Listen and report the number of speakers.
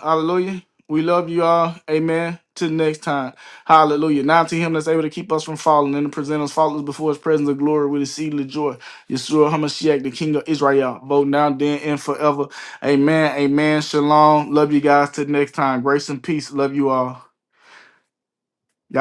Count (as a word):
one